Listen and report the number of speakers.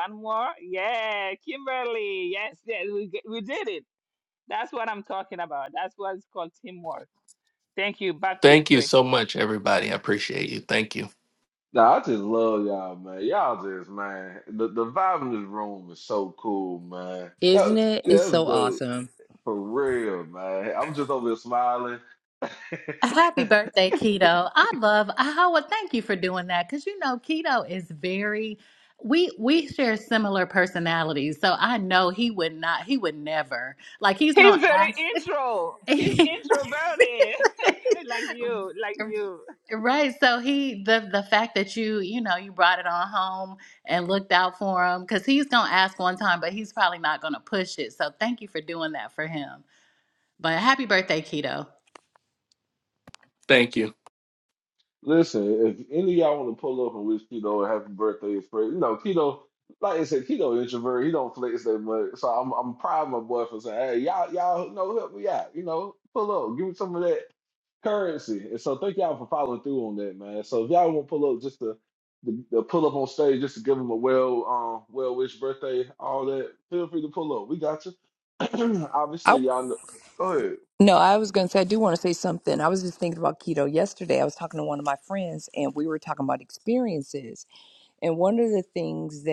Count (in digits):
5